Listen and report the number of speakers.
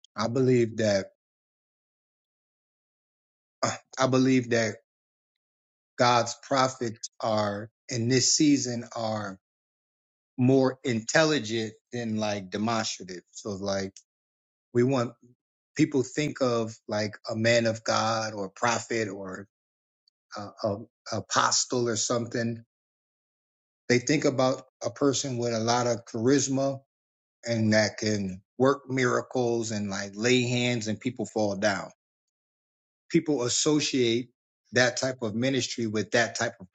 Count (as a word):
one